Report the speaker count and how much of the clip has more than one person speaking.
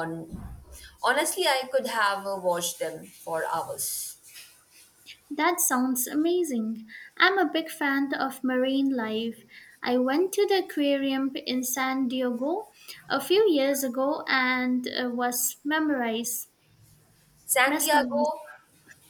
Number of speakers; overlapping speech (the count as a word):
two, about 3%